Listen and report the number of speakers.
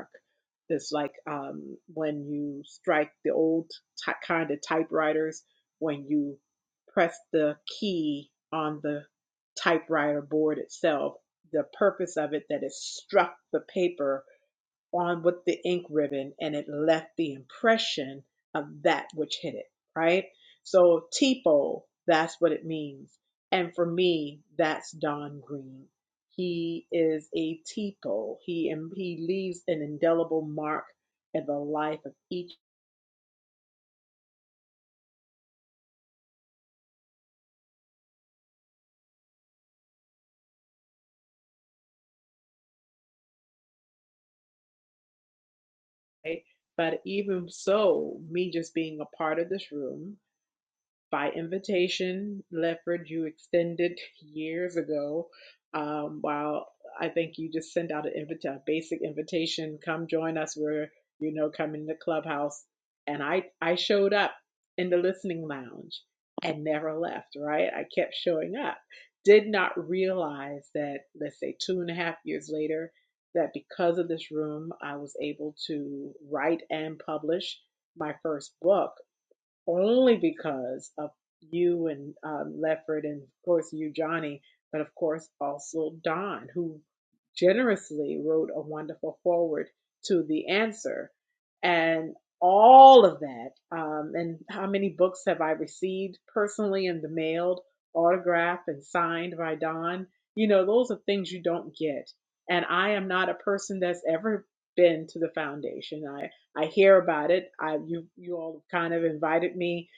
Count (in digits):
1